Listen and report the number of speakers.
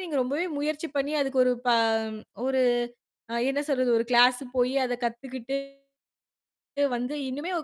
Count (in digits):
1